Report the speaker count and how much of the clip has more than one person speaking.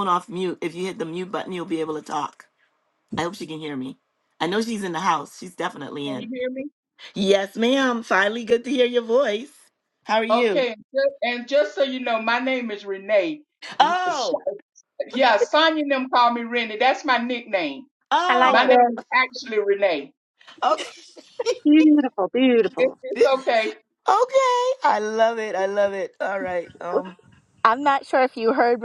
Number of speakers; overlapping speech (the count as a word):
four, about 7%